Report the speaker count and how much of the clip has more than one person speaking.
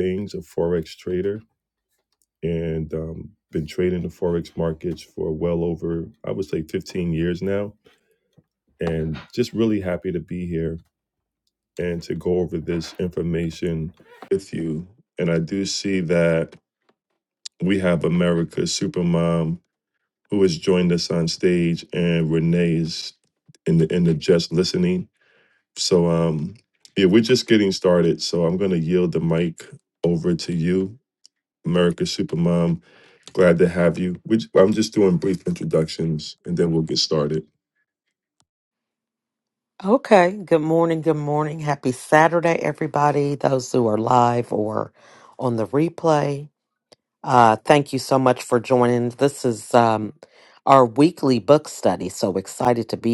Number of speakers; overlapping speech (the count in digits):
2, no overlap